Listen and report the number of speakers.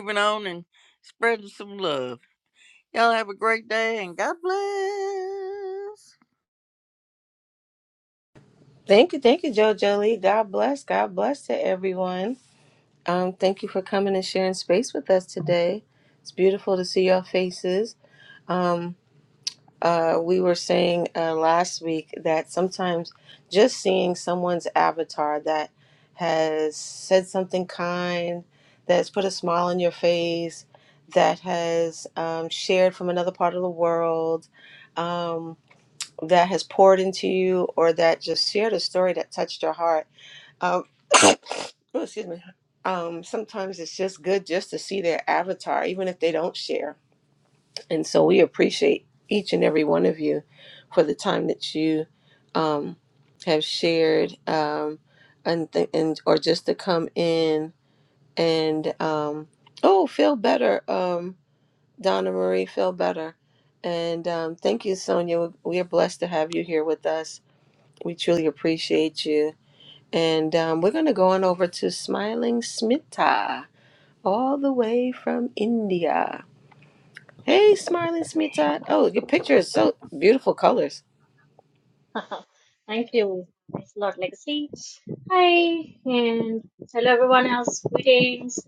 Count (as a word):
three